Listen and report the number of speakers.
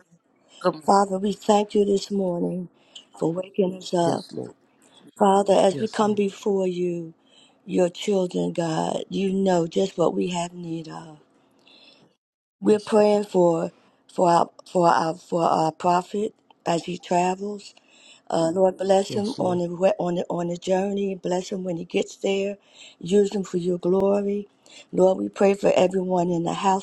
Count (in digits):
2